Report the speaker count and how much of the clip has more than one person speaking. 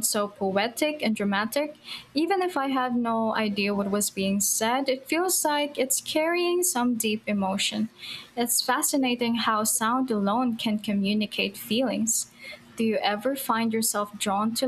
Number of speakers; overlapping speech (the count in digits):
1, no overlap